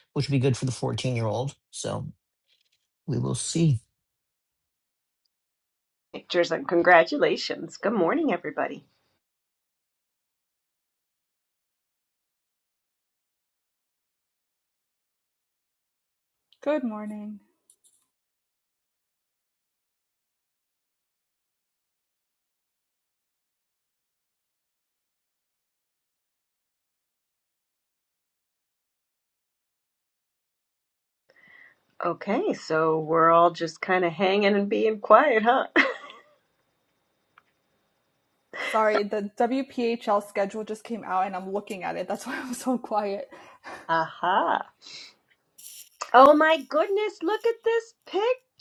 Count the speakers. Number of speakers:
three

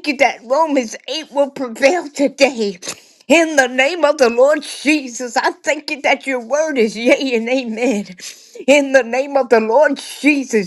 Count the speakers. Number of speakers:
one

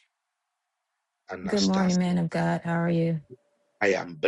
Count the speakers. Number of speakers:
two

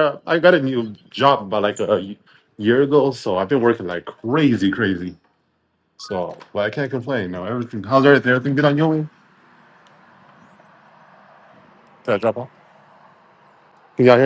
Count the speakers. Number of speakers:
one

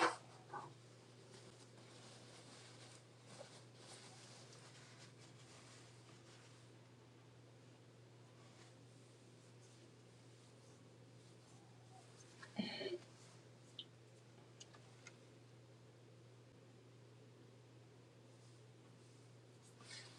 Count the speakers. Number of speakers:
zero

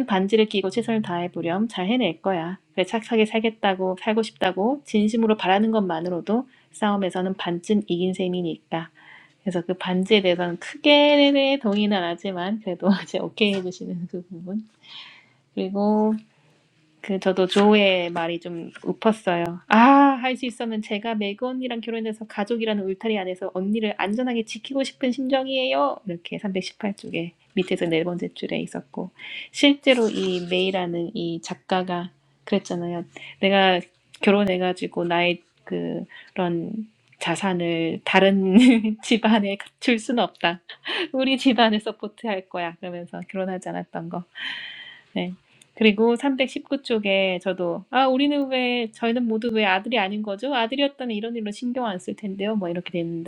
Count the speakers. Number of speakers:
one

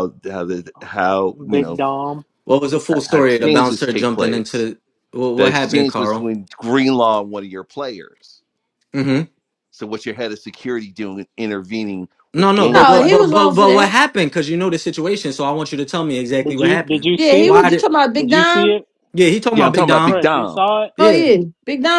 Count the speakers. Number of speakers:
four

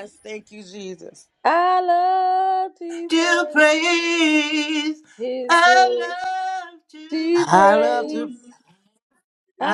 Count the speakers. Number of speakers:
three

